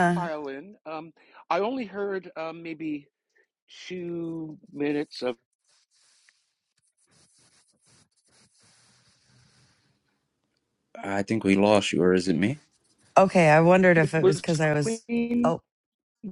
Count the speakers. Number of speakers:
3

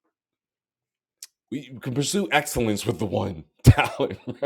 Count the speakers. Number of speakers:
1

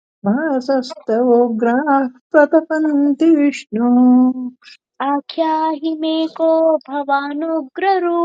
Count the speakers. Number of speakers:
2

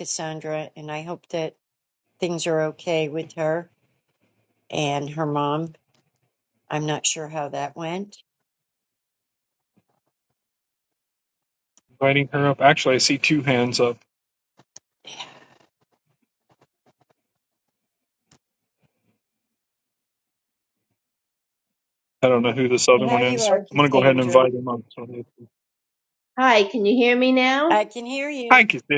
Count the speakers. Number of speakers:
3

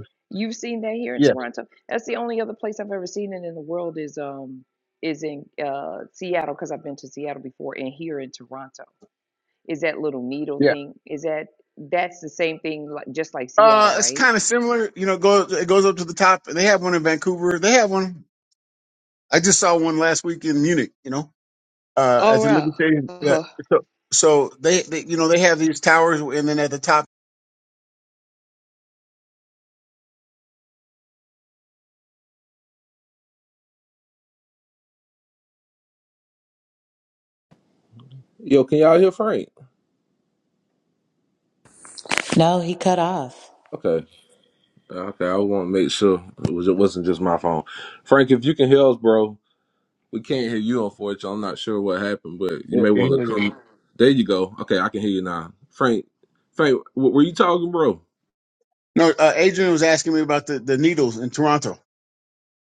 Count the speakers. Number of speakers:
4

